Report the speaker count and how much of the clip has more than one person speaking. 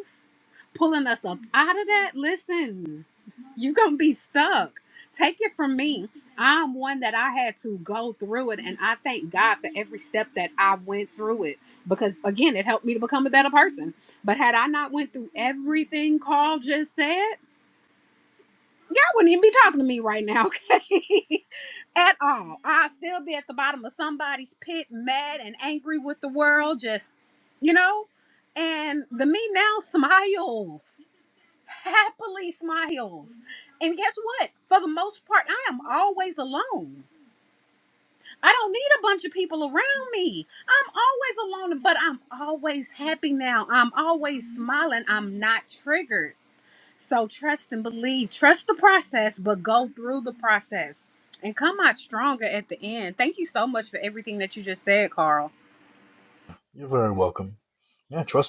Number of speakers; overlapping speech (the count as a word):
two, no overlap